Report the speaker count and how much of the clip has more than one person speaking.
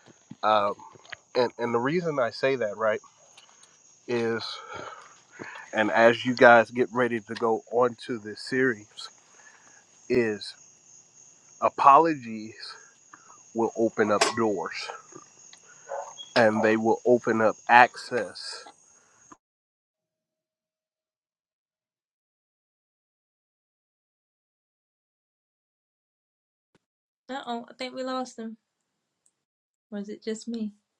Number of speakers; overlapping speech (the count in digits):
2, no overlap